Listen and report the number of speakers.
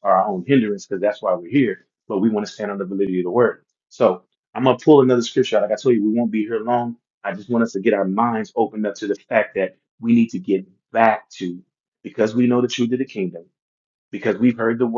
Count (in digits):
1